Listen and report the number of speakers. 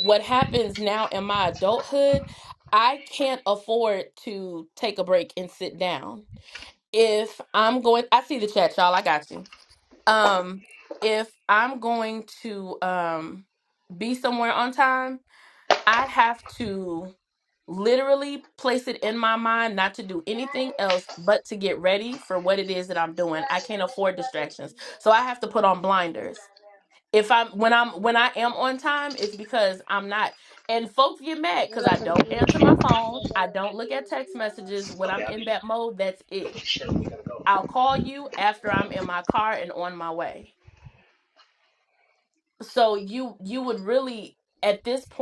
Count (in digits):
2